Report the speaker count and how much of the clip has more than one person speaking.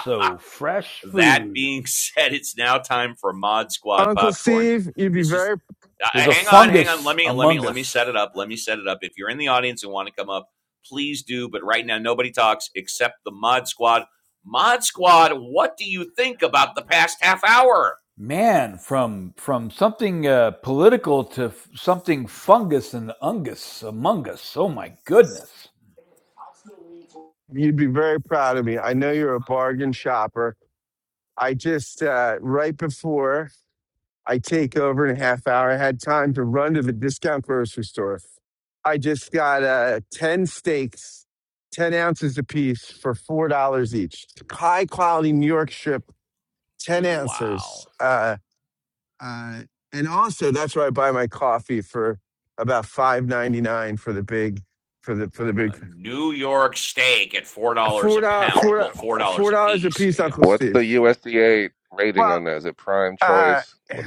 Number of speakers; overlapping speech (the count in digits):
4, about 11%